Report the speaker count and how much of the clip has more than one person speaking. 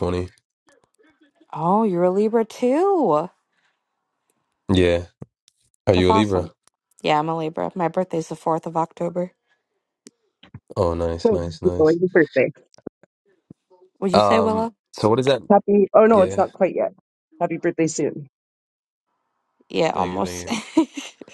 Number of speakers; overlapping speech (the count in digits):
3, about 12%